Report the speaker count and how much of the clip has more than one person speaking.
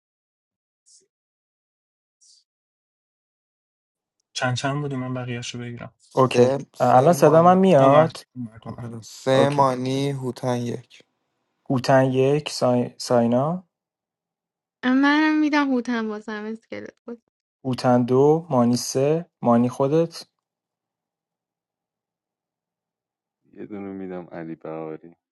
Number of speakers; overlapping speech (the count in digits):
5, about 8%